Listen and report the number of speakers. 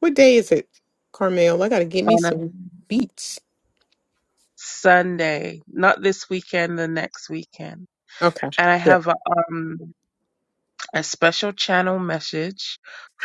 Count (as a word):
two